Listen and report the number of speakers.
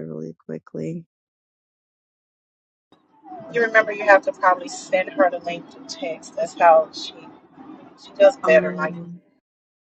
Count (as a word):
two